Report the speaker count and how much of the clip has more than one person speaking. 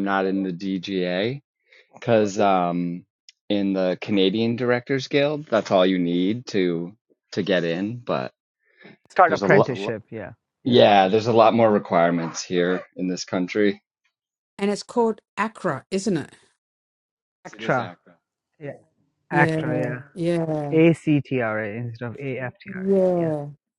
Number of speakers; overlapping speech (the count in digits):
3, about 7%